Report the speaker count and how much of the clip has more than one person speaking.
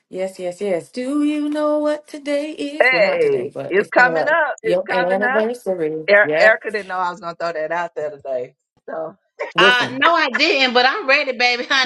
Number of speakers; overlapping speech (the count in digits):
3, about 30%